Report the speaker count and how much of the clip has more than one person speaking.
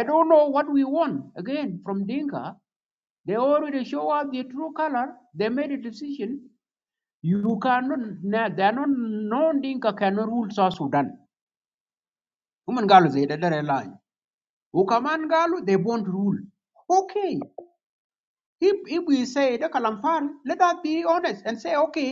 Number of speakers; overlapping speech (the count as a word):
one, no overlap